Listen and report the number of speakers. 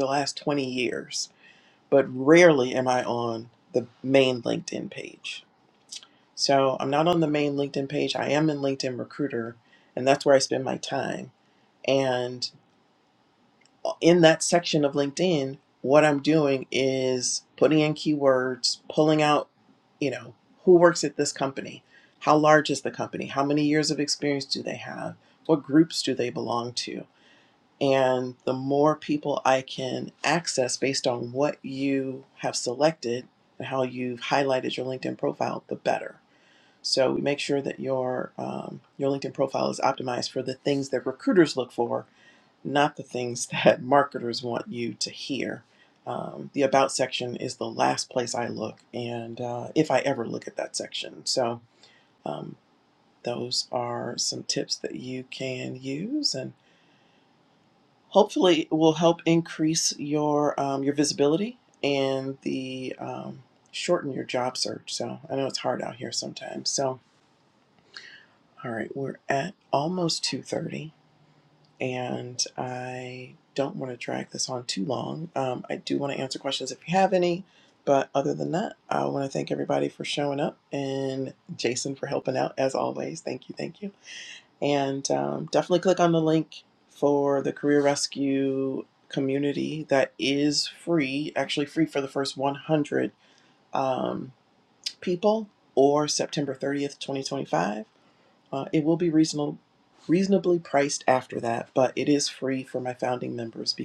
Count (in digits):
1